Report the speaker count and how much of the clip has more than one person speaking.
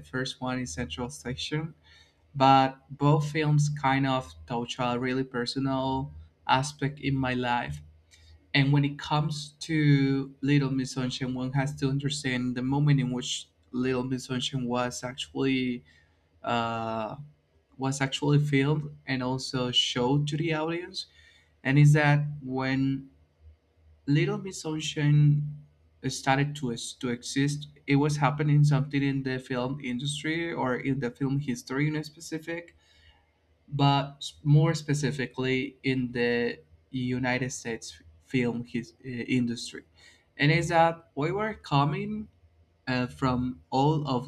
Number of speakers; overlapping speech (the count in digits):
1, no overlap